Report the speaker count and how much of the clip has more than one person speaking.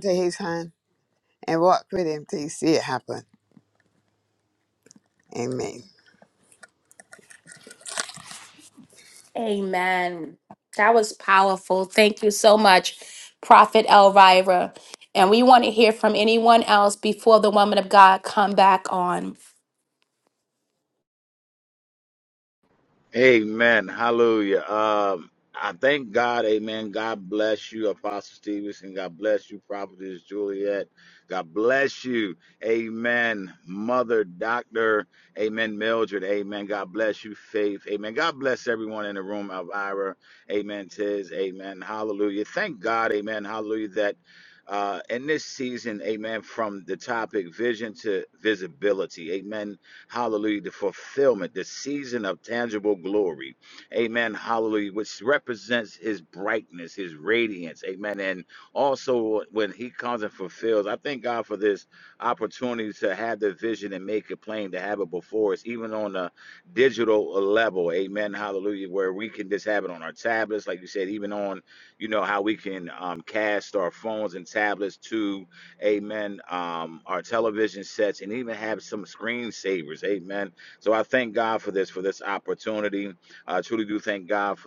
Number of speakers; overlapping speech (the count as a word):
three, no overlap